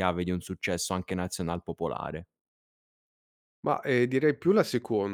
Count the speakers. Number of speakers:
two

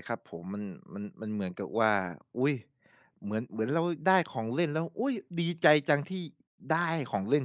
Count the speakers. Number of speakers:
one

